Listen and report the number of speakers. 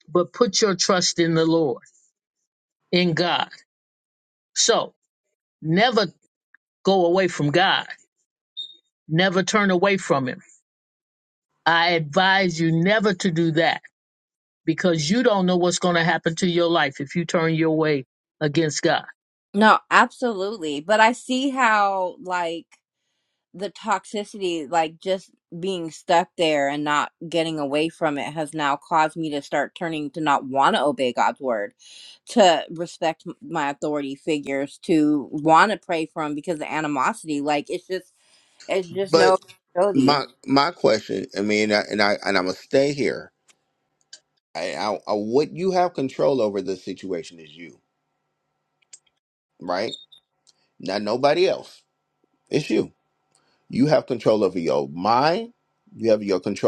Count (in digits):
3